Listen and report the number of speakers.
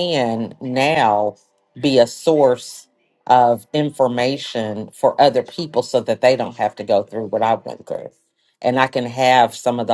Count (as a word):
one